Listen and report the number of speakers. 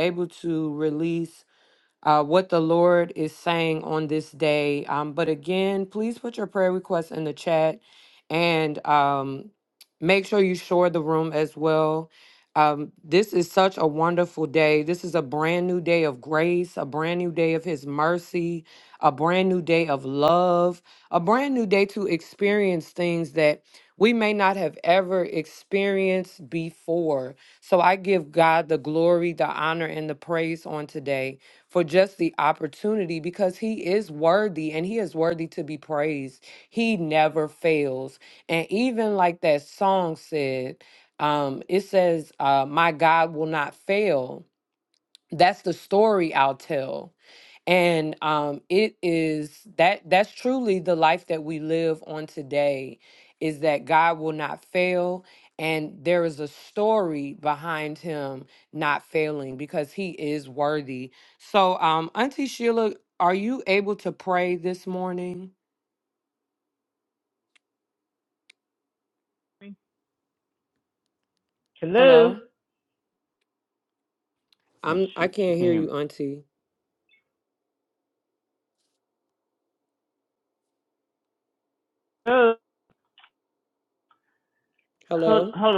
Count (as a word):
two